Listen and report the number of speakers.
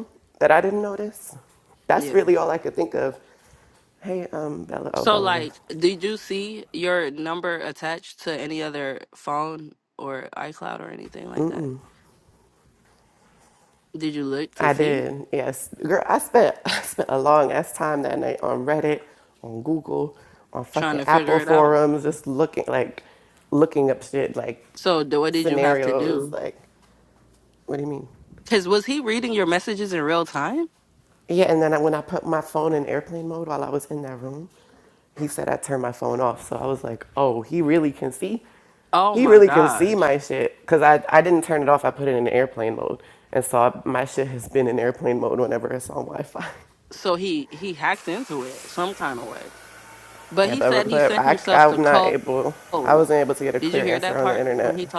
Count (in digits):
2